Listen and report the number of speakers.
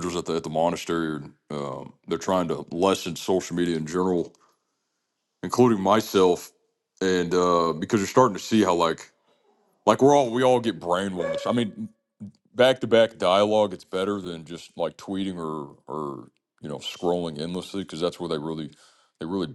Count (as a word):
one